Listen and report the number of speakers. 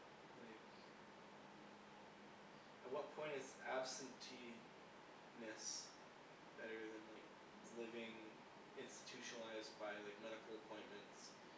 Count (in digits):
1